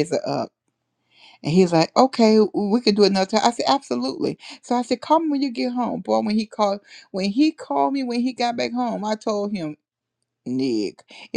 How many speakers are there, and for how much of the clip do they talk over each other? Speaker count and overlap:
one, no overlap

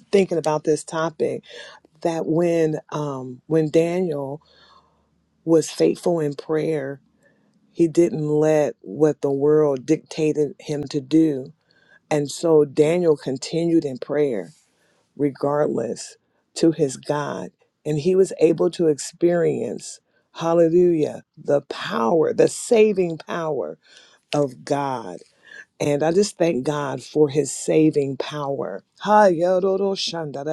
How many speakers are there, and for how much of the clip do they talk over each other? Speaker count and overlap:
one, no overlap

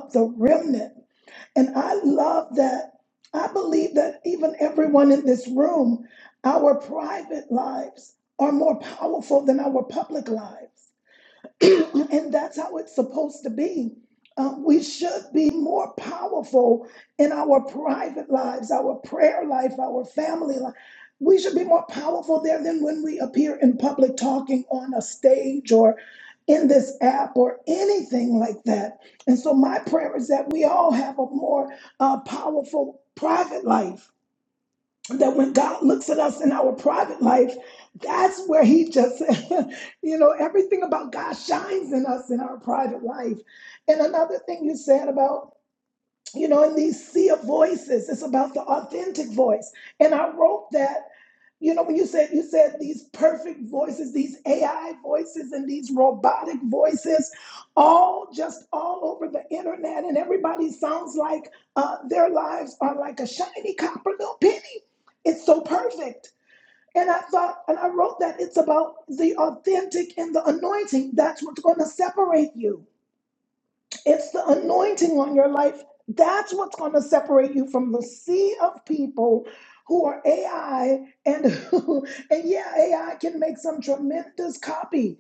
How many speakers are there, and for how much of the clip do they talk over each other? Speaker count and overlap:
one, no overlap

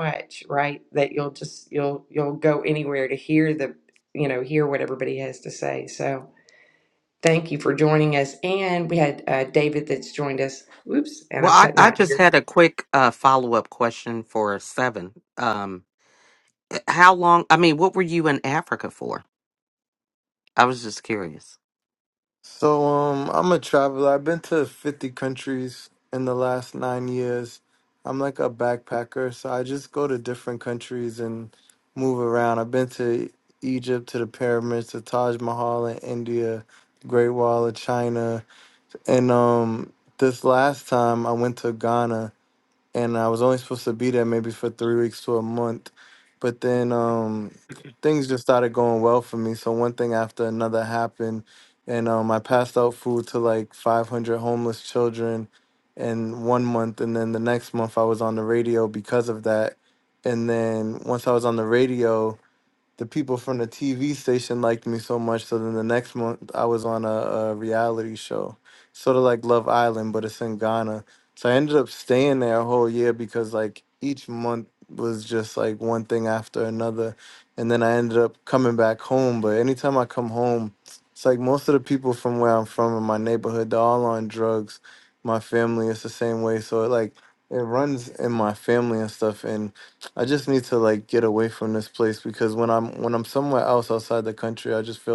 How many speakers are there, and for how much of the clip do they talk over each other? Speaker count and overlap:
three, about 1%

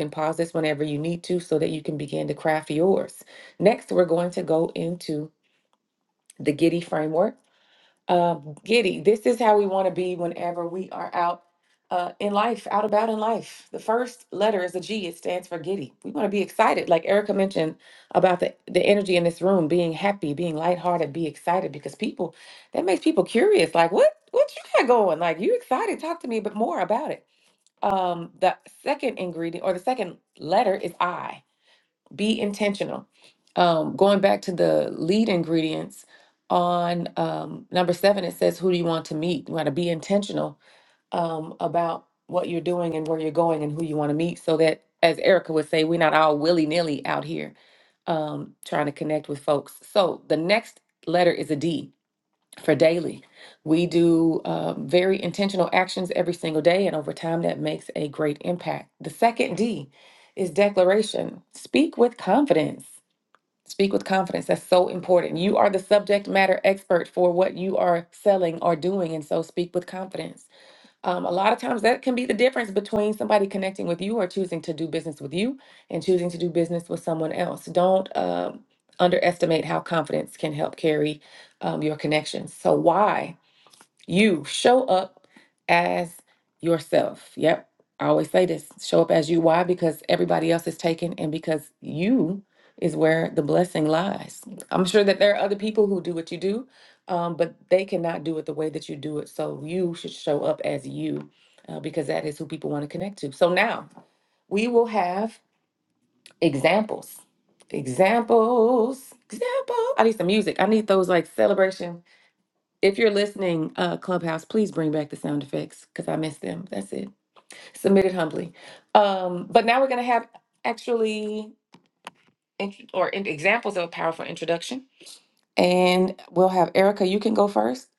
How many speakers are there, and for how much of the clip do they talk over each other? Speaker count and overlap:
one, no overlap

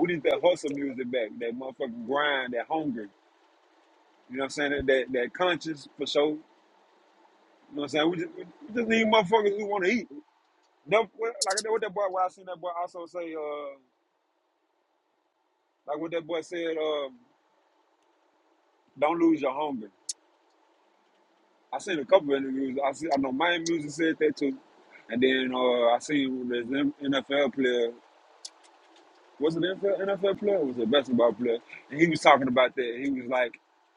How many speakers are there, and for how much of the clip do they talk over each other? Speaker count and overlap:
one, no overlap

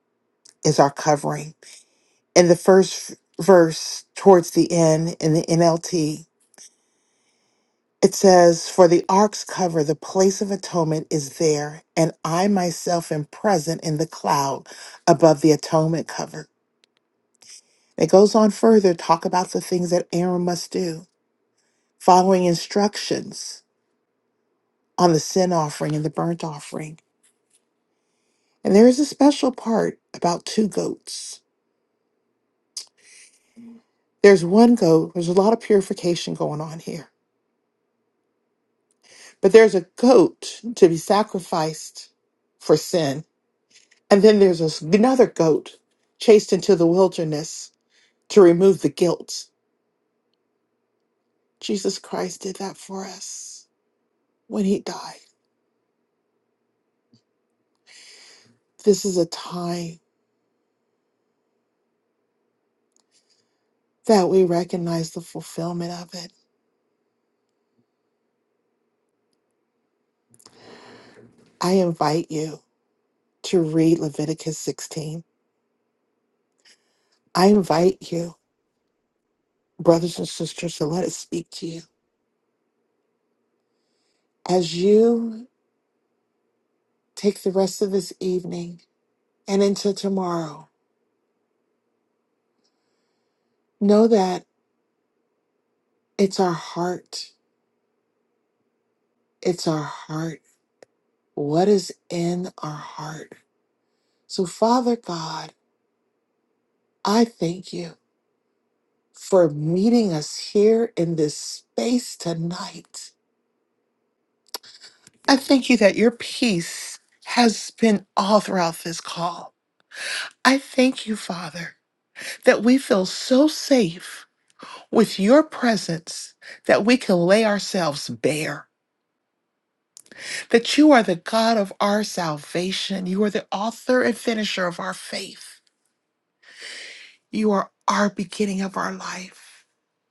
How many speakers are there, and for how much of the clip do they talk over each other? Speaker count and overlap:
one, no overlap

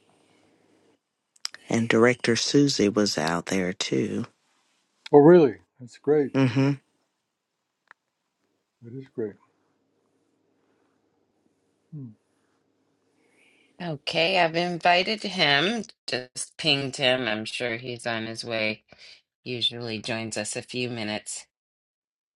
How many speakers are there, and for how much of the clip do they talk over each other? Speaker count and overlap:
three, no overlap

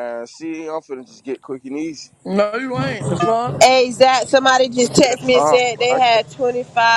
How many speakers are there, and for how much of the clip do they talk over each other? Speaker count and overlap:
three, about 17%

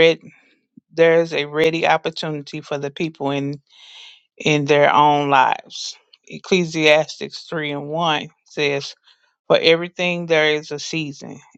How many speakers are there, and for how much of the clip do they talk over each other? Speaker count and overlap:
one, no overlap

